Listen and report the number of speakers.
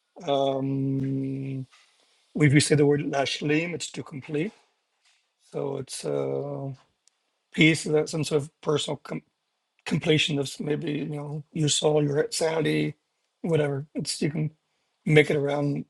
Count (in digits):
1